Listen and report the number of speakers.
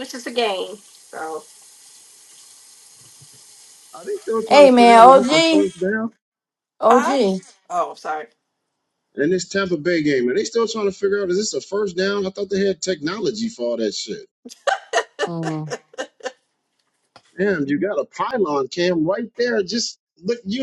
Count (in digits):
3